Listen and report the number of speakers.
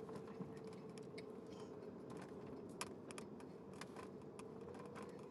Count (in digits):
0